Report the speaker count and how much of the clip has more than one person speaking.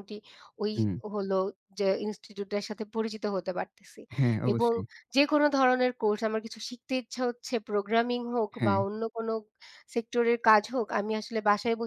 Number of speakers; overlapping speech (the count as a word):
two, about 5%